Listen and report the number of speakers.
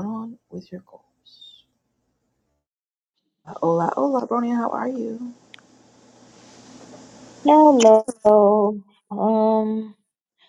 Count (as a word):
two